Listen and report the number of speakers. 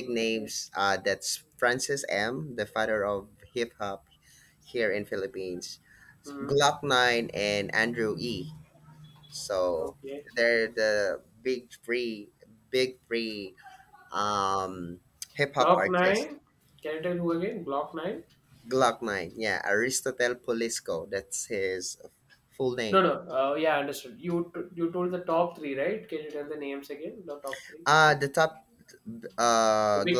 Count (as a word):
two